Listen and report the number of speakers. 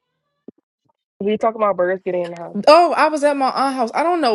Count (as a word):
two